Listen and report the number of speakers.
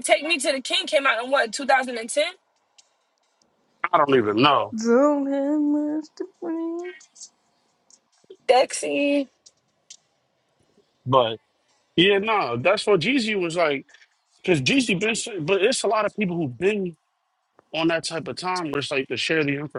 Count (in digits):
3